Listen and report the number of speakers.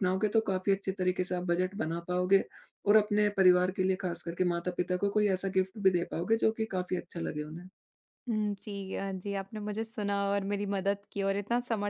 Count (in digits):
2